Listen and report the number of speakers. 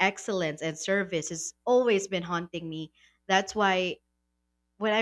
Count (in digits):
1